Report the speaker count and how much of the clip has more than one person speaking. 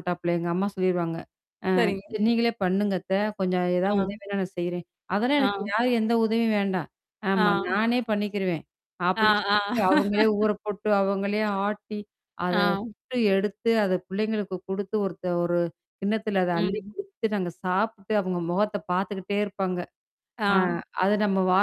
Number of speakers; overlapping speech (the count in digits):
2, about 9%